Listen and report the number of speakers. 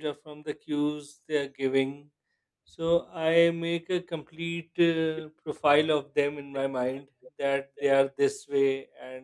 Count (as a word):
one